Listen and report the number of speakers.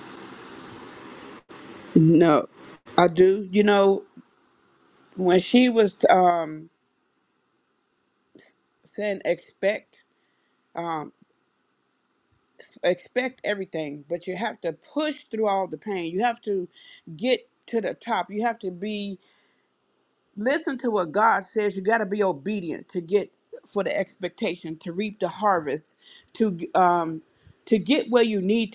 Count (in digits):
1